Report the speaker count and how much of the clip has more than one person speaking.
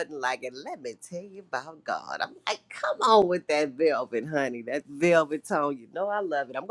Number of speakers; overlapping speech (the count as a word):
one, no overlap